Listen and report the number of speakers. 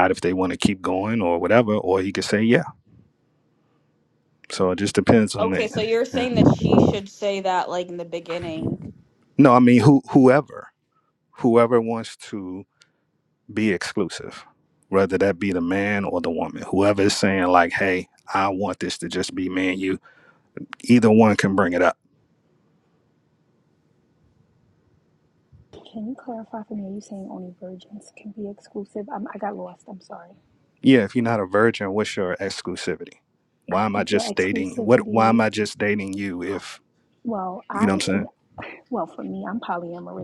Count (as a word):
three